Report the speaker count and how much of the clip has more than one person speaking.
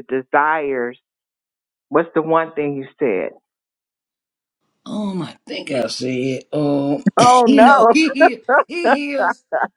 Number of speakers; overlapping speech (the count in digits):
2, about 3%